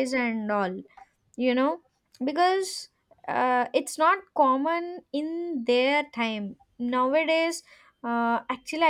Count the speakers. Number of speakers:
one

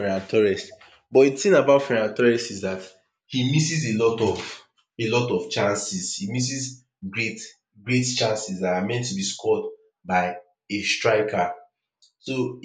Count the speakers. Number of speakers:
one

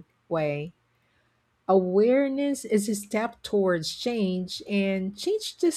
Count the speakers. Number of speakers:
one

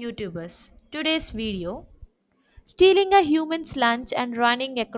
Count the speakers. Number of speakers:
one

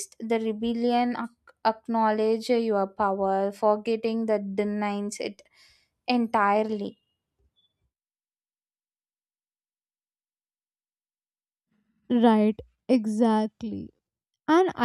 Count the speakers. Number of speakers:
two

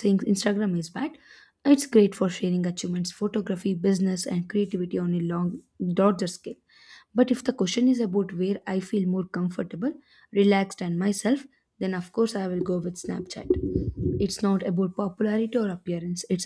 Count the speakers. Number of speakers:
one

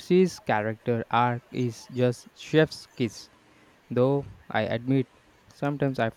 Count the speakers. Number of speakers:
one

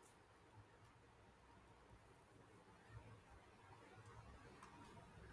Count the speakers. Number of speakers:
zero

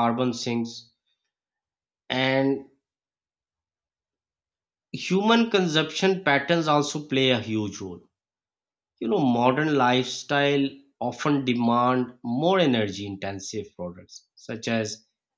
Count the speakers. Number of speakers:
one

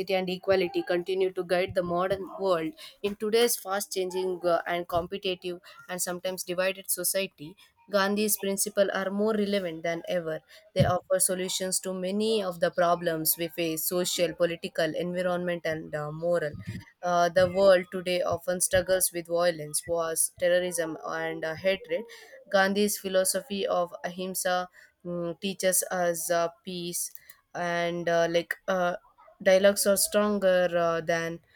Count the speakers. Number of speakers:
one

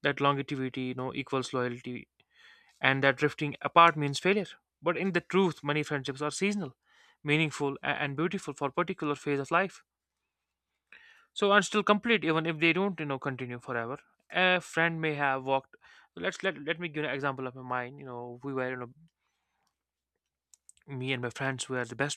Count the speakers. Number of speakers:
one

